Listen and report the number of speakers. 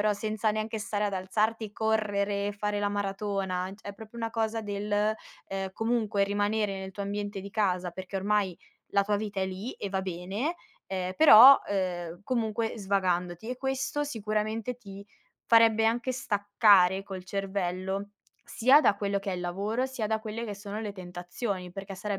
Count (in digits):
1